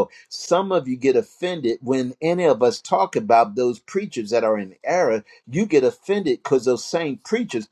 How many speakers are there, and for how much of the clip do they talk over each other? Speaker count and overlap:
1, no overlap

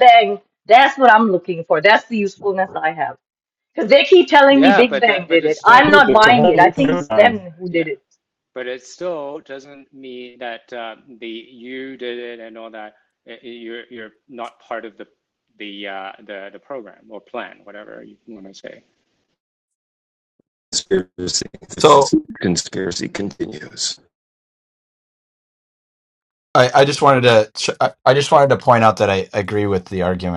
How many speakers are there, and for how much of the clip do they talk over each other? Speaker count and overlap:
4, about 11%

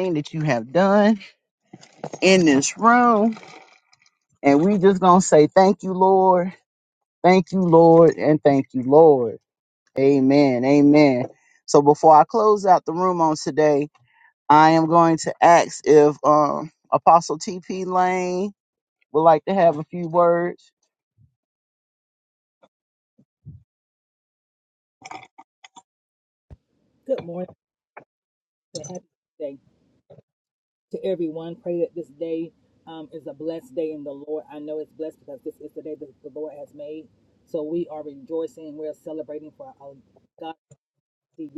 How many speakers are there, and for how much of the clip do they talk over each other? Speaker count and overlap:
2, no overlap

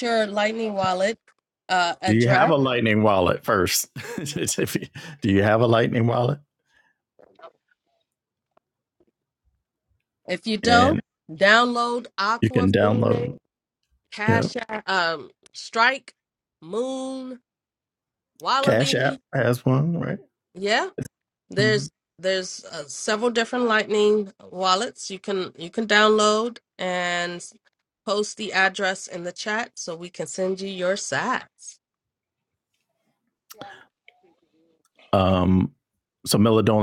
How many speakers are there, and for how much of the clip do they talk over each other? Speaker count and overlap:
2, about 8%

